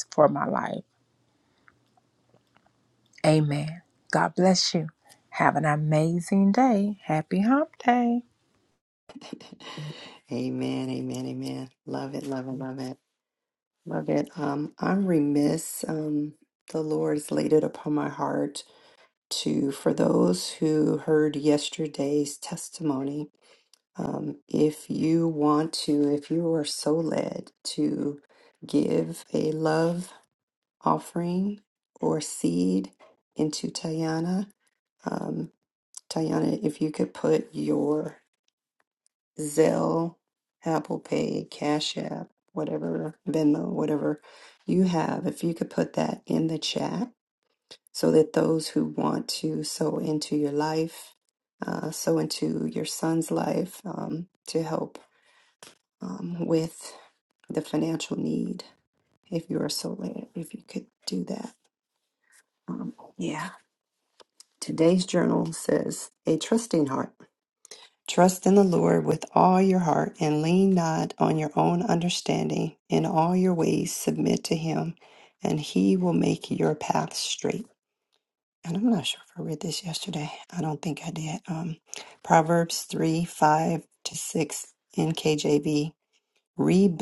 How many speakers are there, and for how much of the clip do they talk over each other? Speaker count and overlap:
2, no overlap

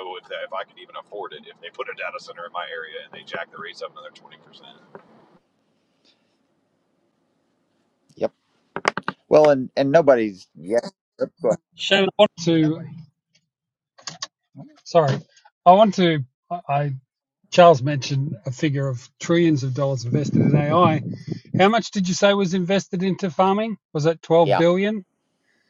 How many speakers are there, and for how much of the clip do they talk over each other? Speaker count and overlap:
3, about 1%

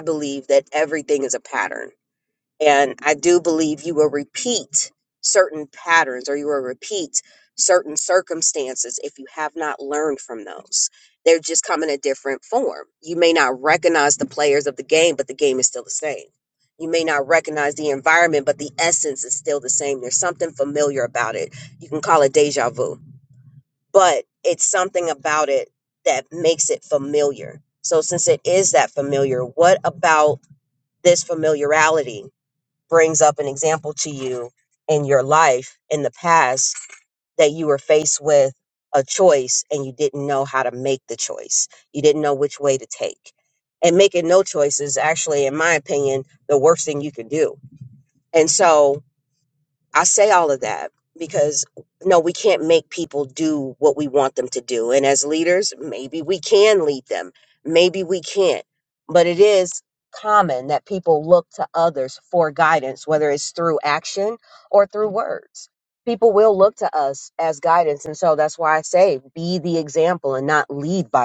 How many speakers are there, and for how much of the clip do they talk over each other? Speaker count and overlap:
1, no overlap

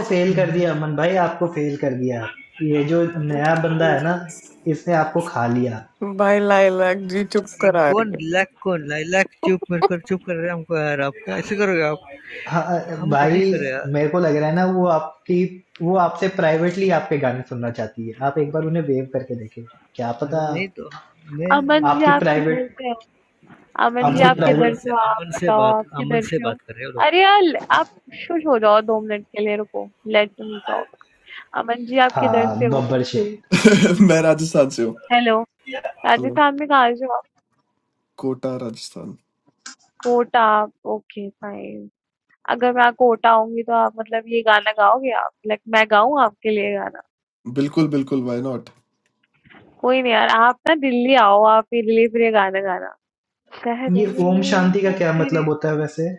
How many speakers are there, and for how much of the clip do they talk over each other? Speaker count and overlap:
5, about 14%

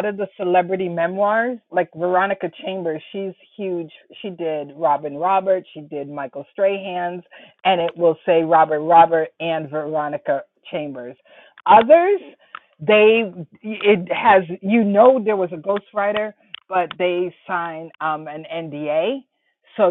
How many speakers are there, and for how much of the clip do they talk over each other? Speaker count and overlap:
1, no overlap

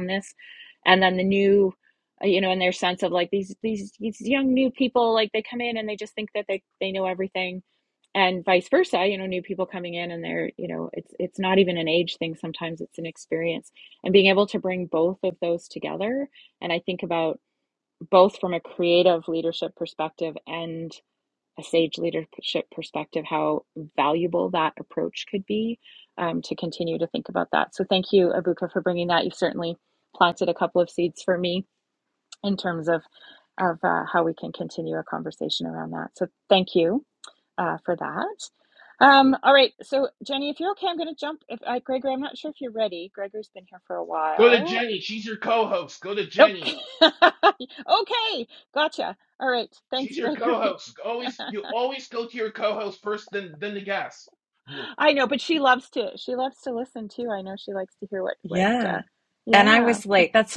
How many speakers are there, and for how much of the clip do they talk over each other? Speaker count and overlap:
3, about 4%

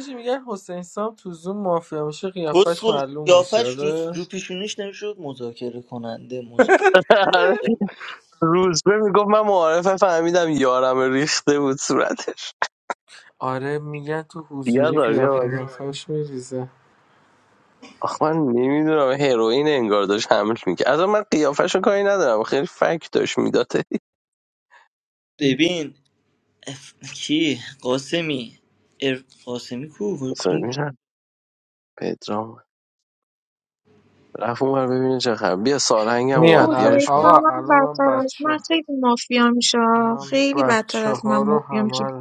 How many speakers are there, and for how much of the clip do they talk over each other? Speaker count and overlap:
4, about 17%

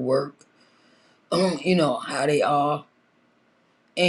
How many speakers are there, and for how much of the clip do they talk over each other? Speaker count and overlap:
1, no overlap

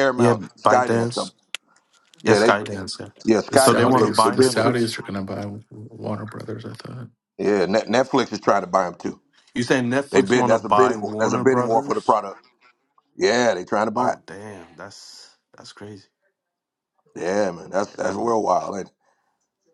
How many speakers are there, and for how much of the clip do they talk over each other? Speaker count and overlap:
3, about 27%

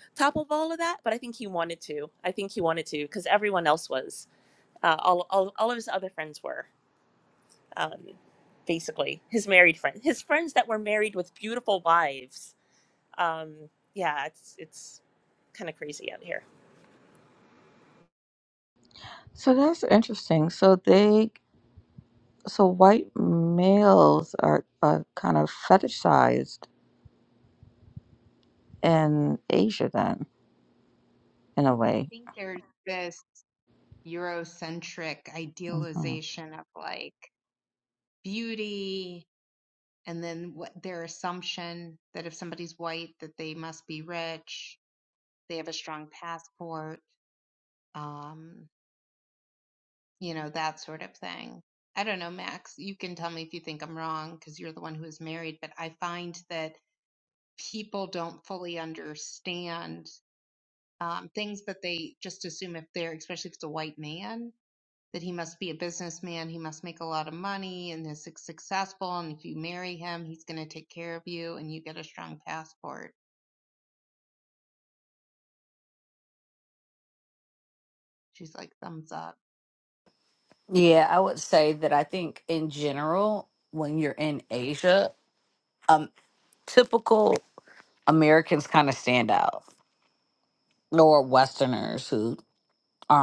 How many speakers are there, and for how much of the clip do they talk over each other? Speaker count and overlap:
4, under 1%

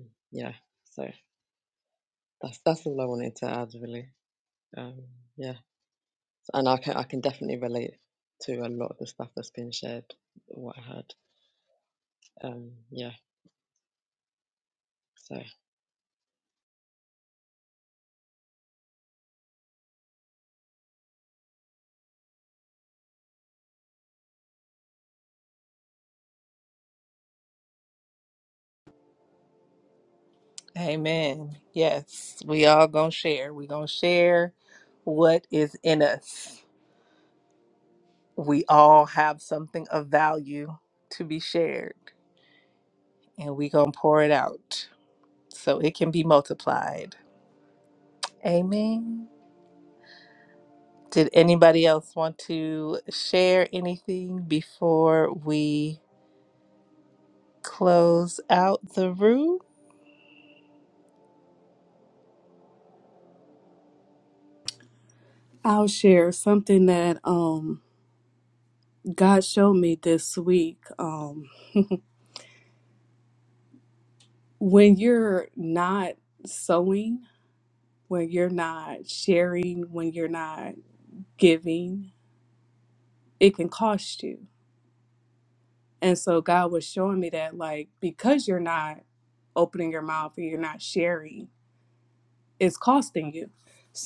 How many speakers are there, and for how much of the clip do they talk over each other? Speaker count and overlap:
3, no overlap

